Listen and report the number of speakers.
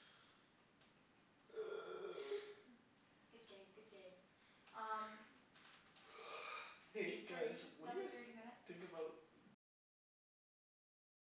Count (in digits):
2